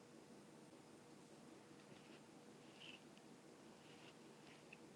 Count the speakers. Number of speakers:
0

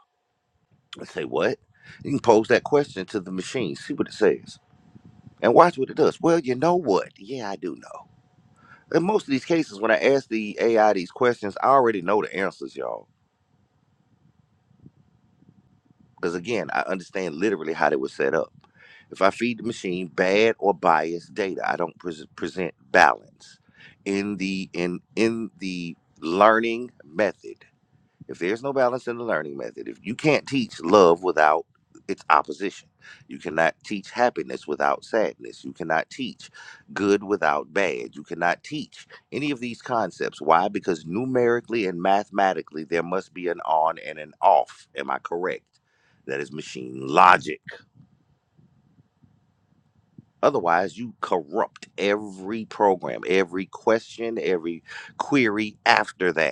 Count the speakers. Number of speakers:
1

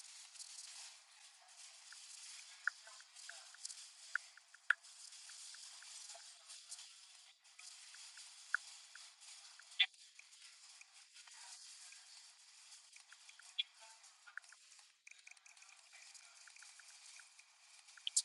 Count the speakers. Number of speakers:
0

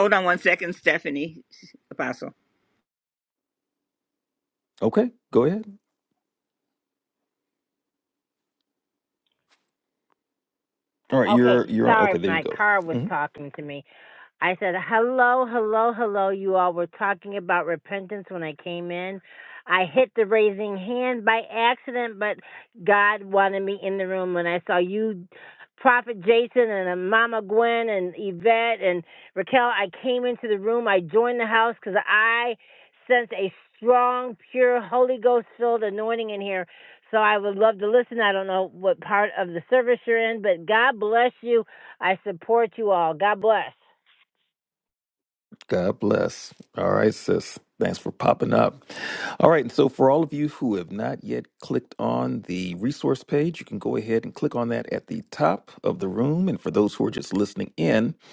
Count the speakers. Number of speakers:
3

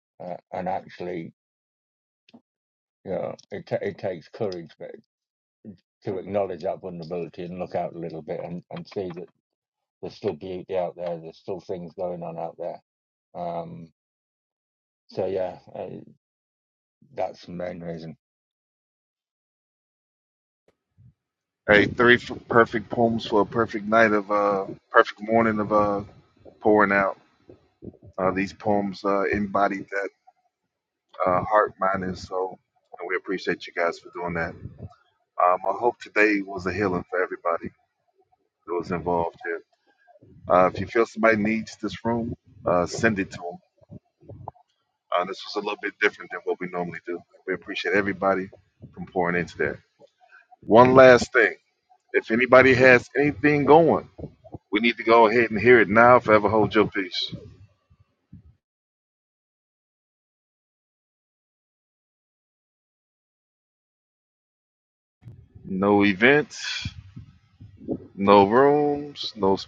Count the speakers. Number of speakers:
2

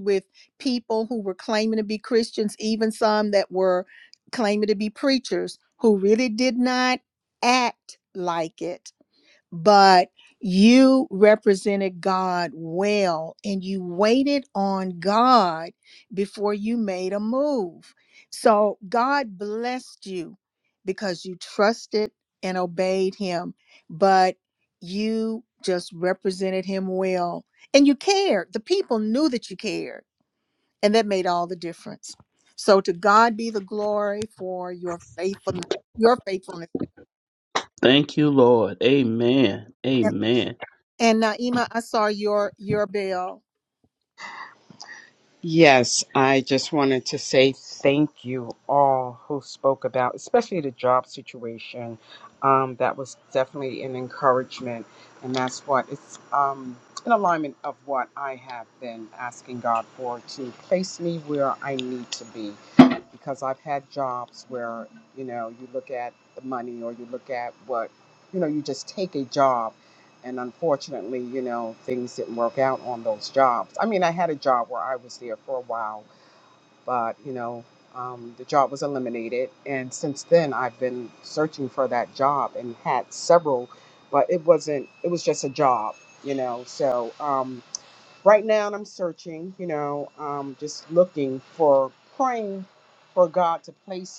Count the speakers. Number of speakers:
3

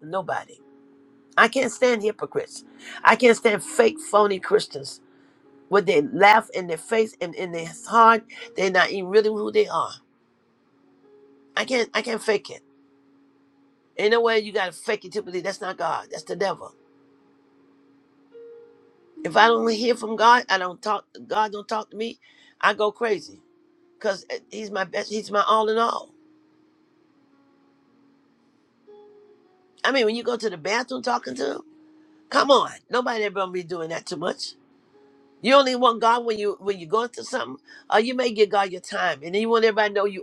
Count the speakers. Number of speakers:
1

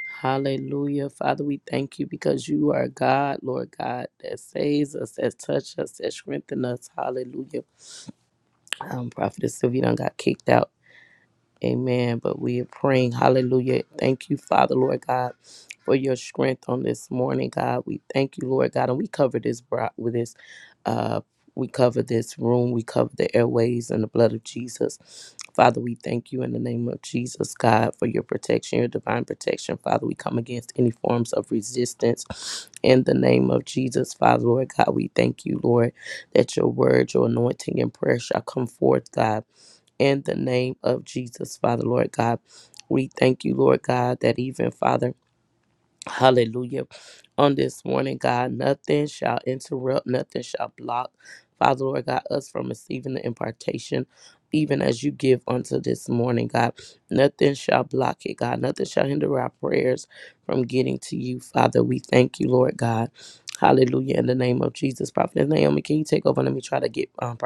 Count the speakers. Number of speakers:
1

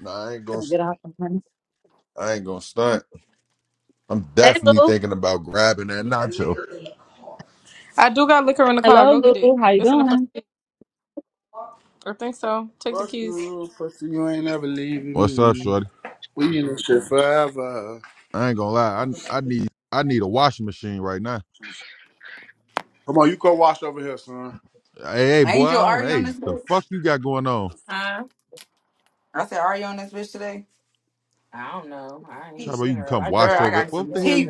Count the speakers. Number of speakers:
6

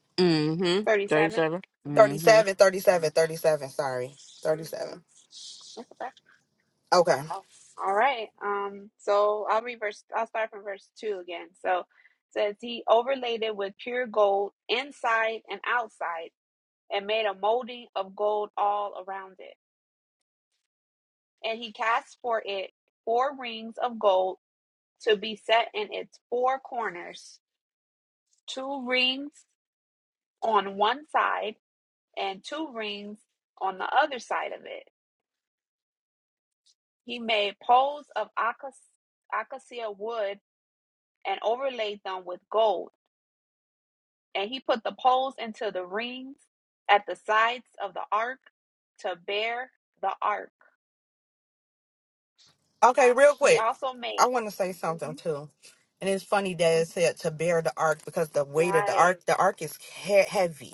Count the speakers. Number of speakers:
3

